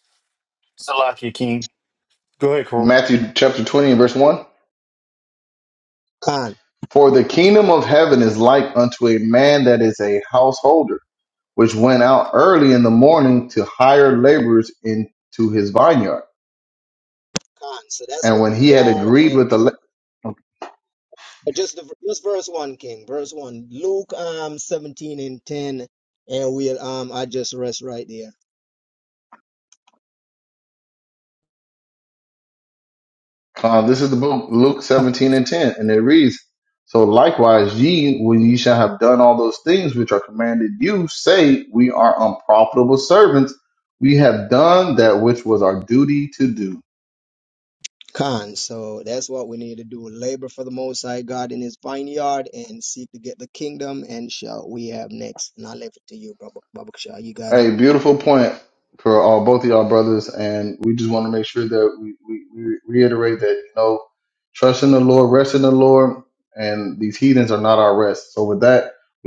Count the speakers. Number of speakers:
three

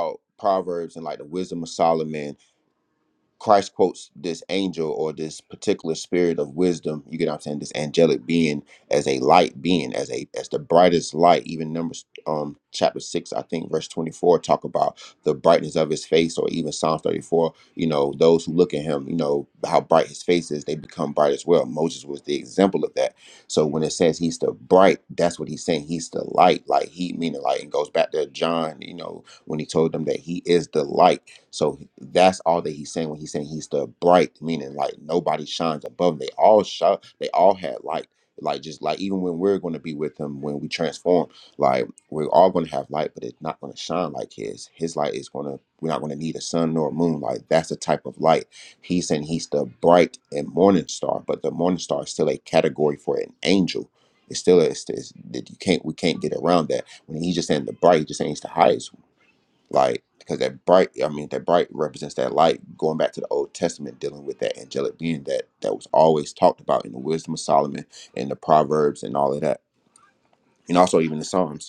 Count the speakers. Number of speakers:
one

